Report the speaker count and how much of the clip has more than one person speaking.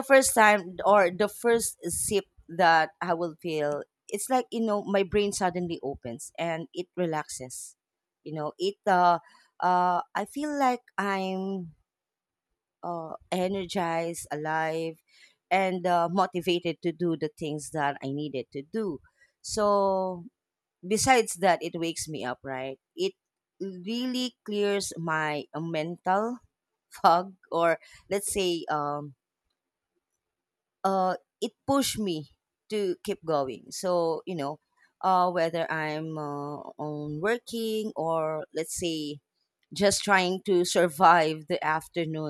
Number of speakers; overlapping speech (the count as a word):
one, no overlap